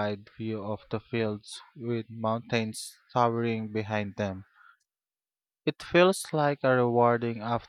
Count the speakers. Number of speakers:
1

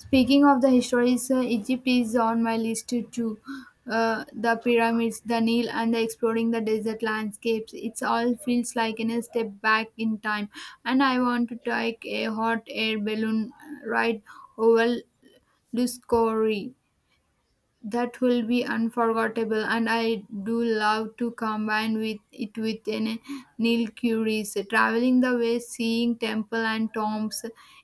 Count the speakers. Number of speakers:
1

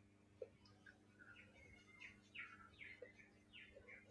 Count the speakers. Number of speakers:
0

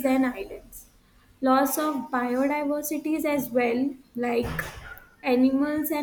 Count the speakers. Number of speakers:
1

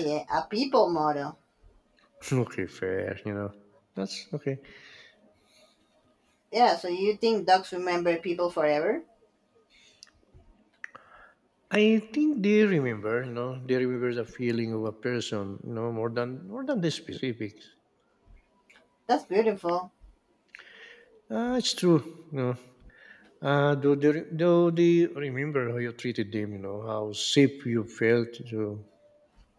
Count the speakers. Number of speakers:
2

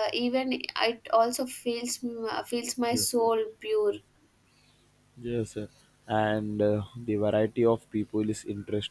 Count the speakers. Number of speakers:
2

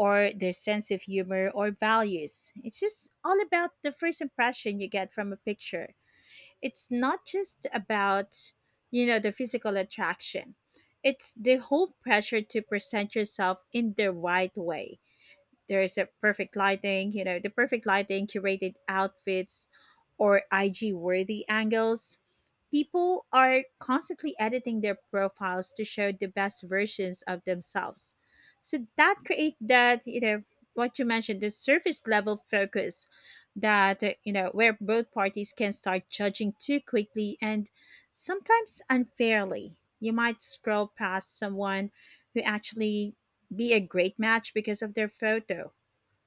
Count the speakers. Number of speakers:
1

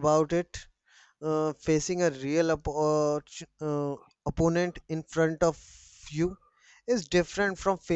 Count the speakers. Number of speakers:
1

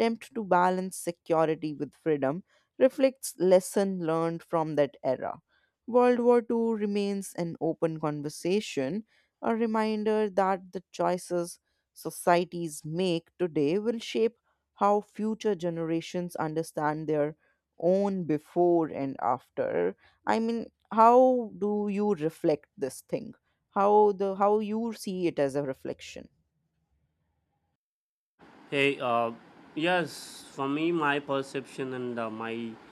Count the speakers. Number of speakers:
2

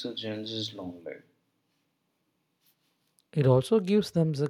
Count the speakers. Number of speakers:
2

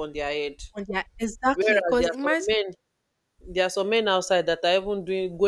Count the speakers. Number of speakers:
2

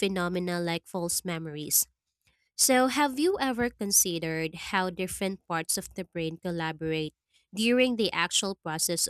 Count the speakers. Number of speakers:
1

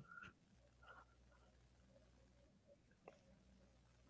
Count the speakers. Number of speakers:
0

